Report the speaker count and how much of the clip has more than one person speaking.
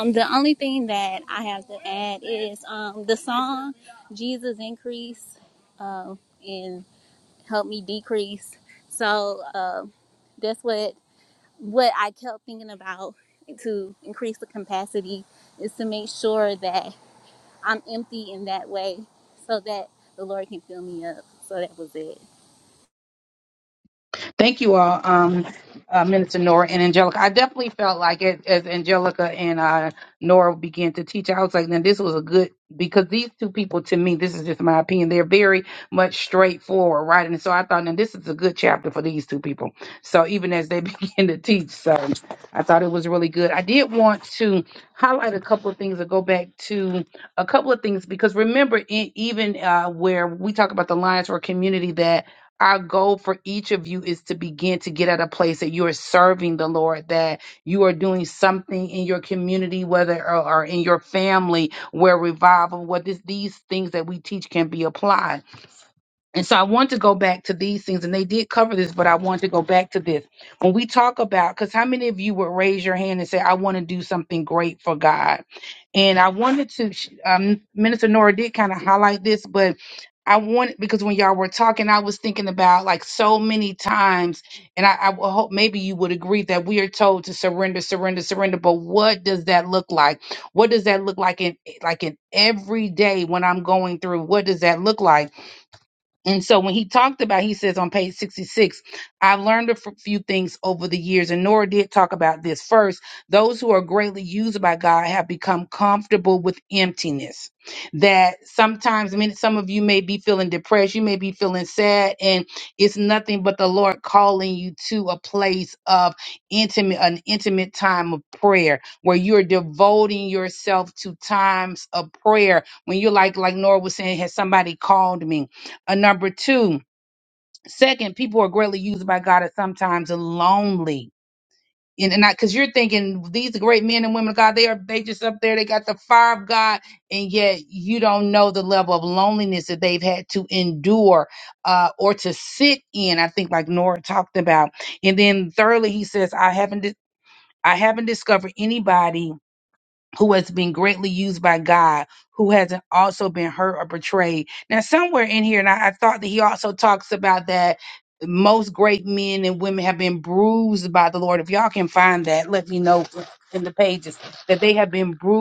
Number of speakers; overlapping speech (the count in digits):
2, no overlap